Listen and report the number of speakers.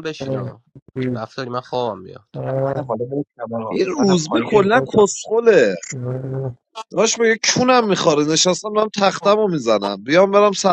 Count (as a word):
four